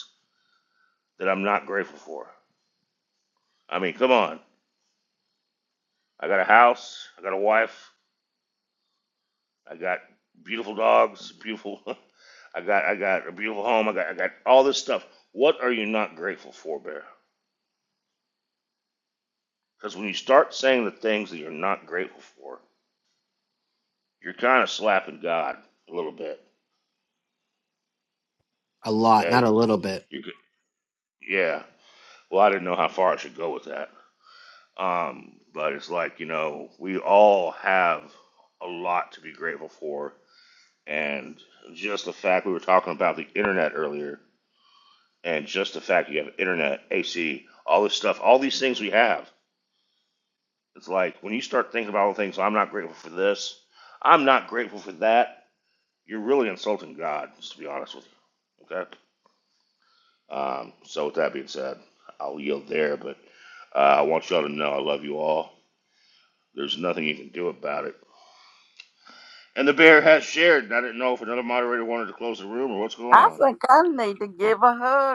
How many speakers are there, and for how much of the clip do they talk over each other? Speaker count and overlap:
three, about 1%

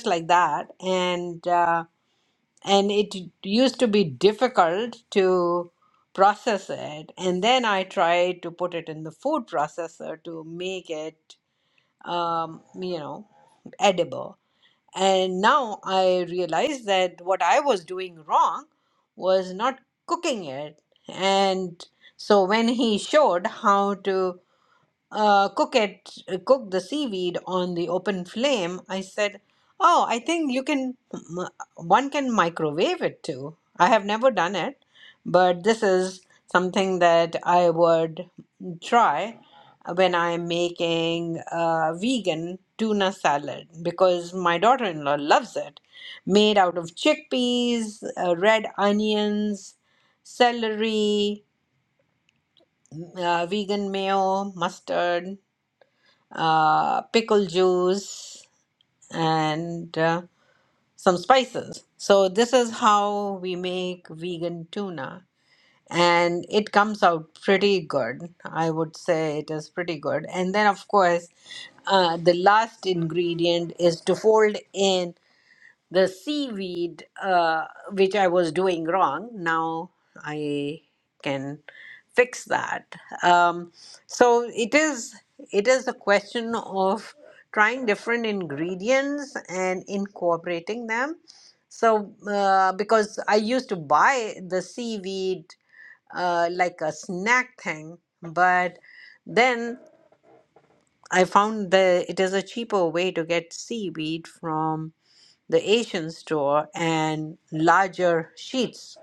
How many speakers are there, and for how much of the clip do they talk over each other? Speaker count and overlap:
one, no overlap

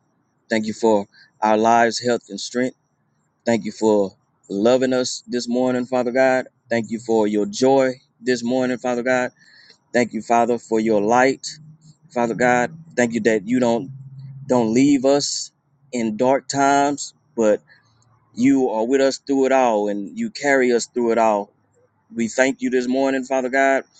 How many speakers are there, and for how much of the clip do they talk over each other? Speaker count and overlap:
one, no overlap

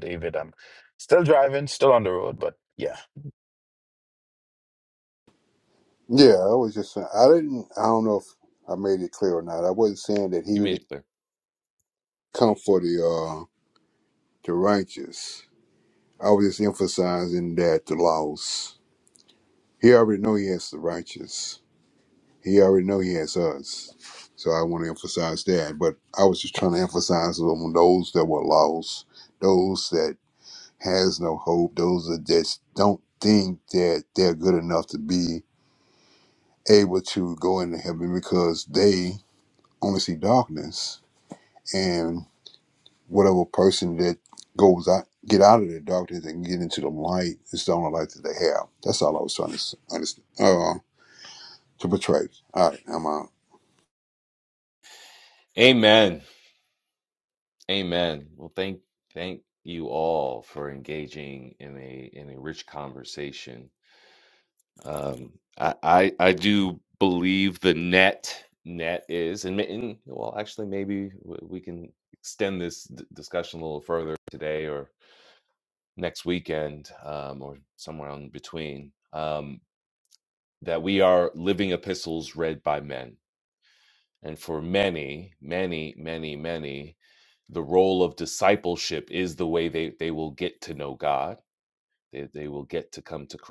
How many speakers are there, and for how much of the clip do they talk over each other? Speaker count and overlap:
three, under 1%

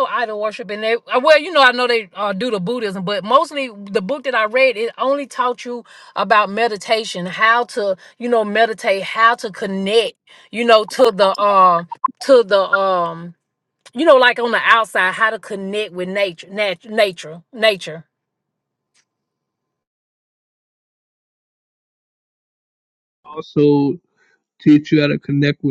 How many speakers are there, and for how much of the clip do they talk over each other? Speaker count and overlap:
two, no overlap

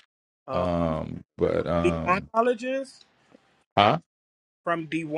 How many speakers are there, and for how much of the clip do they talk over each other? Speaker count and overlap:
two, about 10%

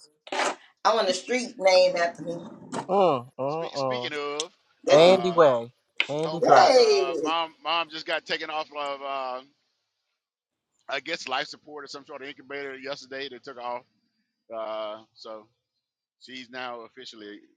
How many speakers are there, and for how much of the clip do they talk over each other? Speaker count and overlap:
three, about 12%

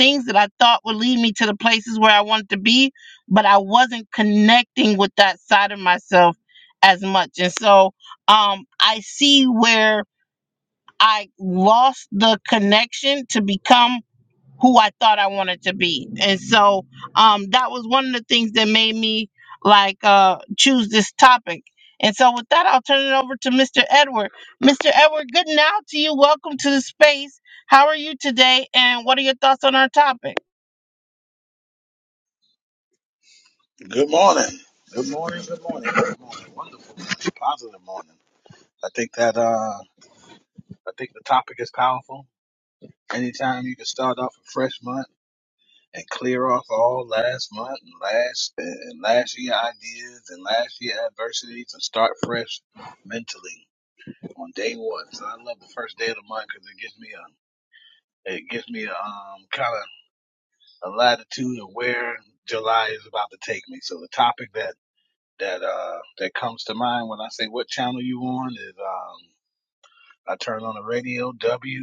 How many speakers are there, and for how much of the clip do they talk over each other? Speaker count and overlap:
two, no overlap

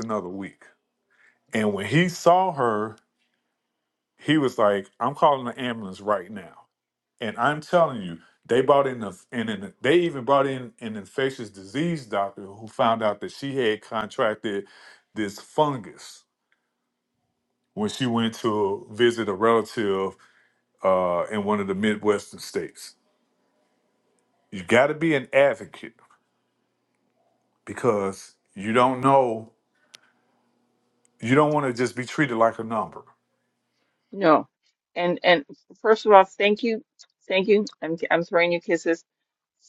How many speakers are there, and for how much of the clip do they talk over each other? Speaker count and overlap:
two, no overlap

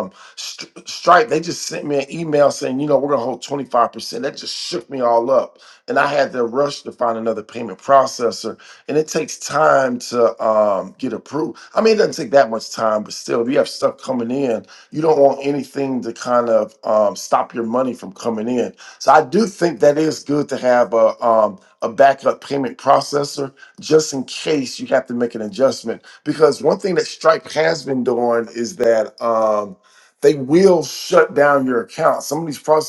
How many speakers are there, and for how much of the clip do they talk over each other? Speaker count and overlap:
one, no overlap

